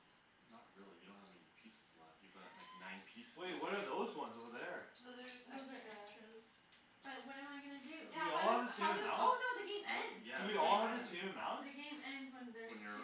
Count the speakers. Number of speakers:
4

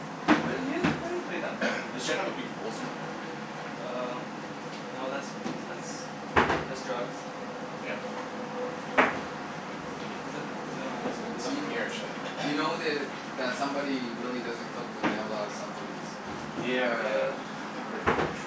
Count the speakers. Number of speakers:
3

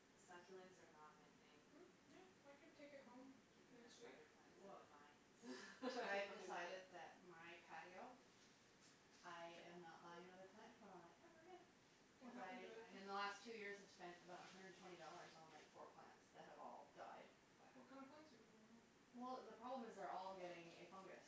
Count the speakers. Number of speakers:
3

